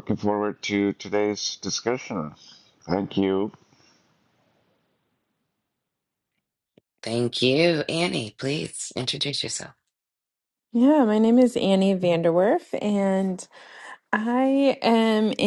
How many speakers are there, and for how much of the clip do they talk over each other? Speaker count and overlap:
3, no overlap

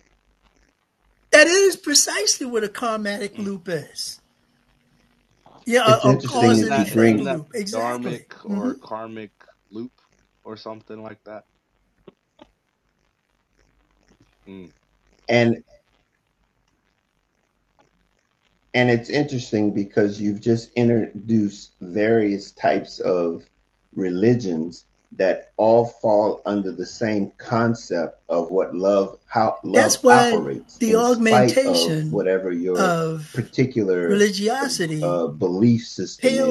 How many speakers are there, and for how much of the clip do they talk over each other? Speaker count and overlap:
3, about 17%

